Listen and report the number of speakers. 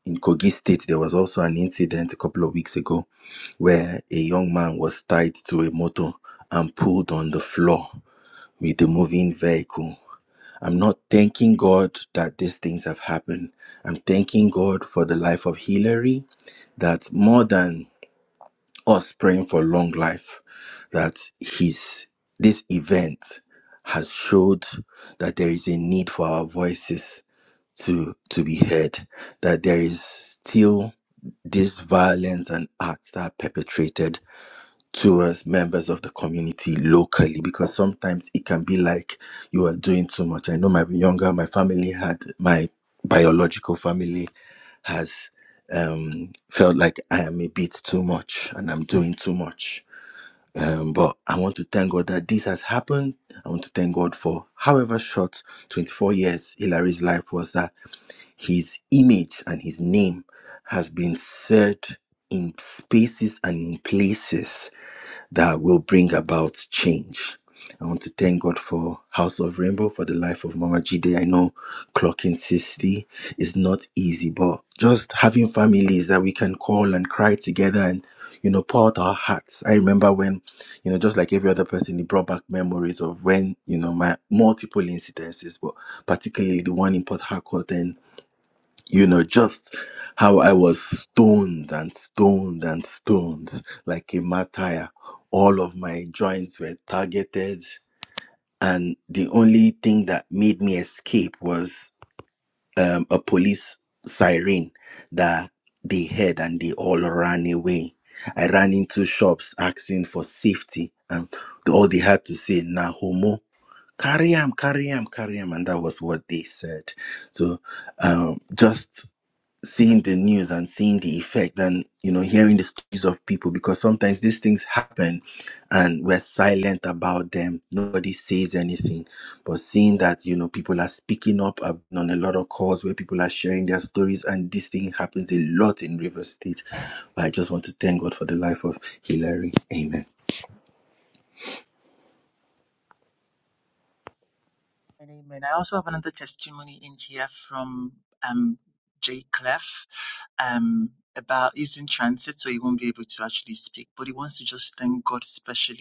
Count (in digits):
2